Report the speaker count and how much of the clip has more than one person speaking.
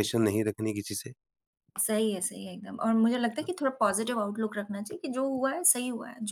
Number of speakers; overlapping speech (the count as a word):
two, no overlap